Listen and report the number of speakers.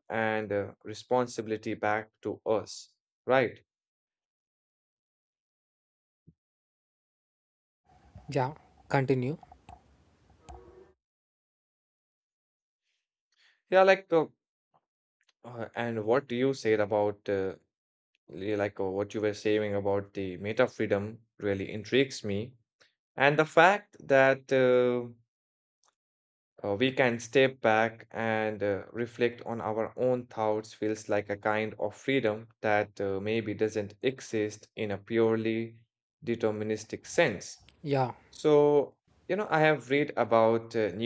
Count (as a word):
two